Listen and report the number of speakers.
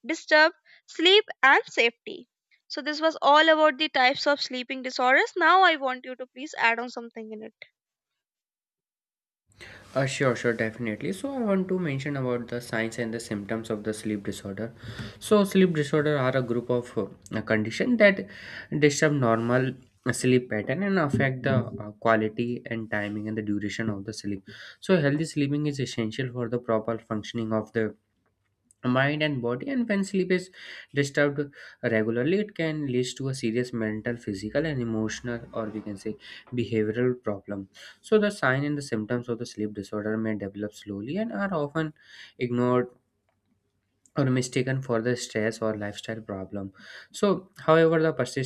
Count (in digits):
2